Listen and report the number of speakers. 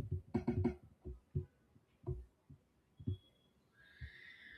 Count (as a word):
zero